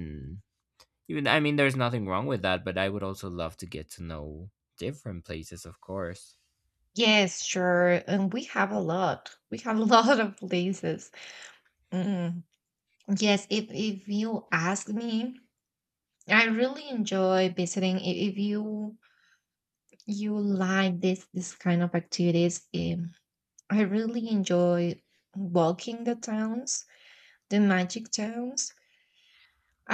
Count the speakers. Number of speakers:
two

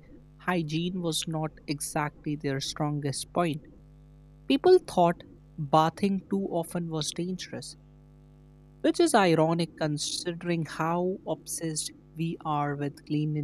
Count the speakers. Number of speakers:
one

